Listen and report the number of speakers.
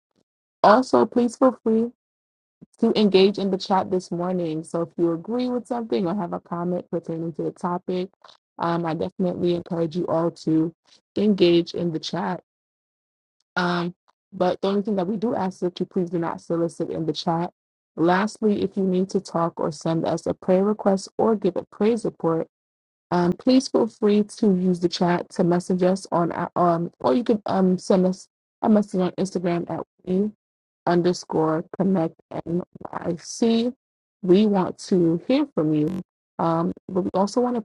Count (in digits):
1